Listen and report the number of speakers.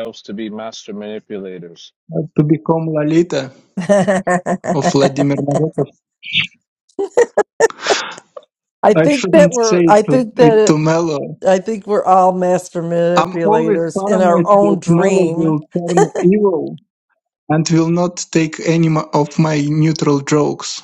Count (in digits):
3